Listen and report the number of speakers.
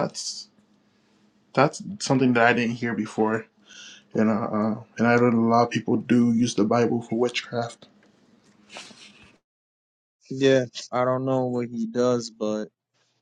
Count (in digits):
2